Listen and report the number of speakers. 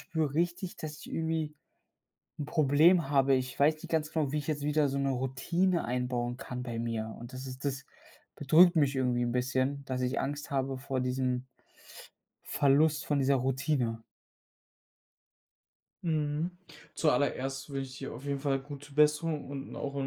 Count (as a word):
two